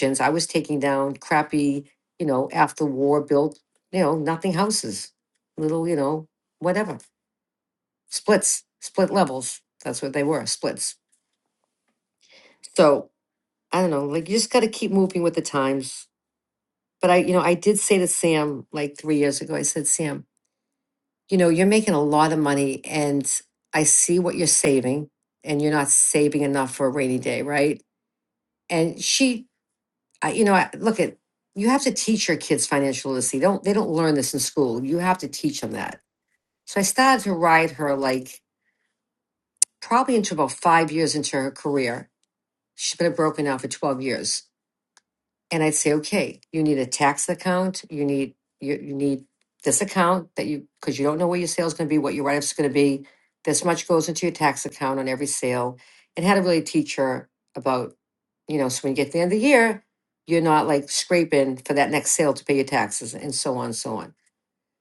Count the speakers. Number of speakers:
1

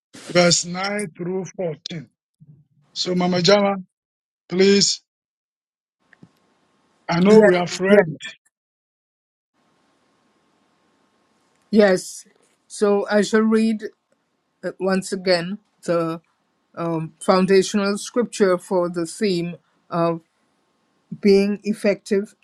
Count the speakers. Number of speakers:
2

